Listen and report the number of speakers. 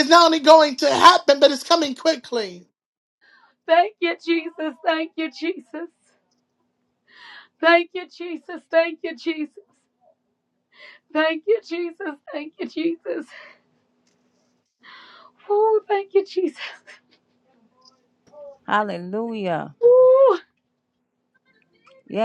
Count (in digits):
3